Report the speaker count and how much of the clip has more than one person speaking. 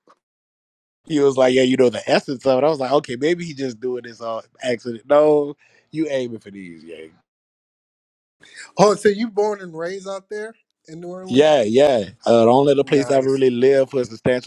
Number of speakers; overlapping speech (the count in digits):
2, about 4%